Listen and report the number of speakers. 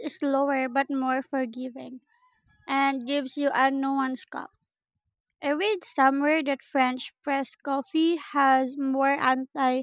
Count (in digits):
1